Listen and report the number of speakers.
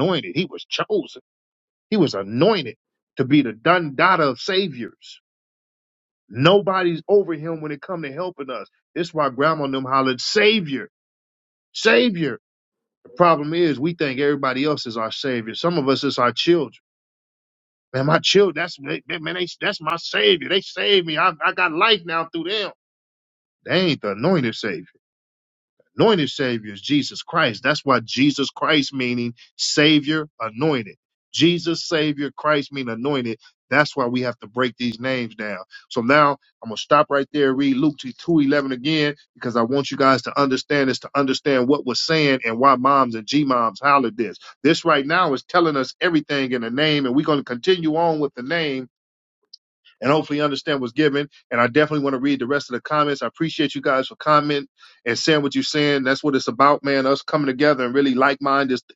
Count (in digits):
1